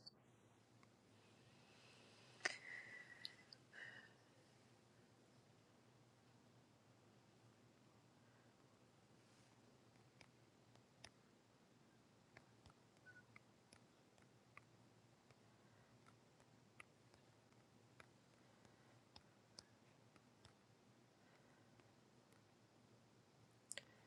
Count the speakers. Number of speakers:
zero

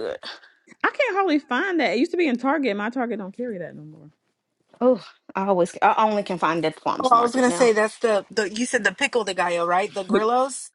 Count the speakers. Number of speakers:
three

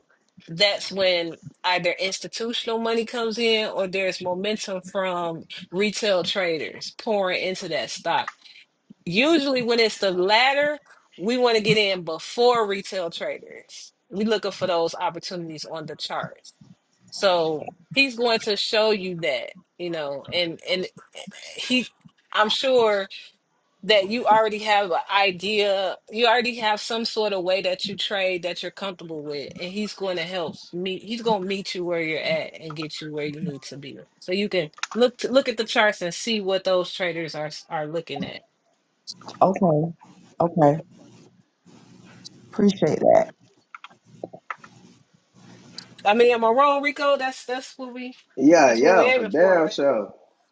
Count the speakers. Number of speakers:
three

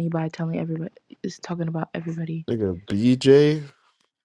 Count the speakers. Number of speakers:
two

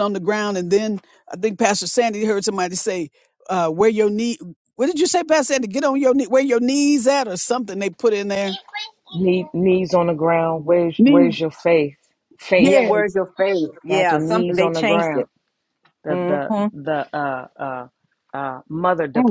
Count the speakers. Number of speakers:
three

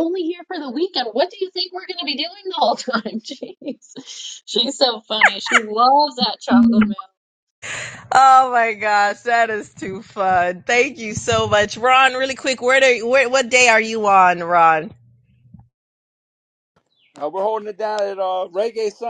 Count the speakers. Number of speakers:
three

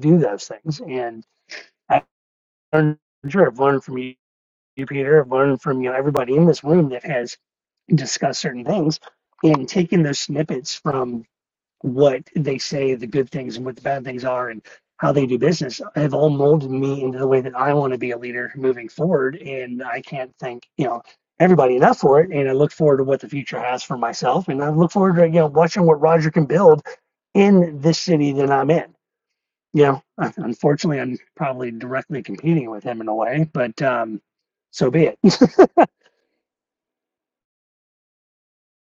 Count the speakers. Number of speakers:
one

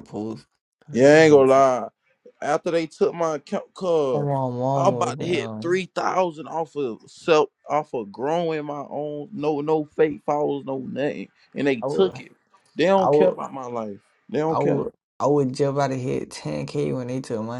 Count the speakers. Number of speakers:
two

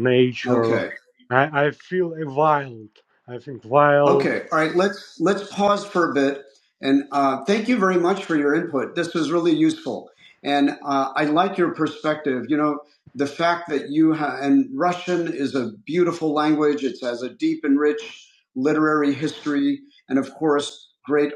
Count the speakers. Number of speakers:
two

